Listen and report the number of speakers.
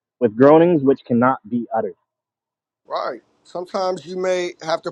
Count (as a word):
two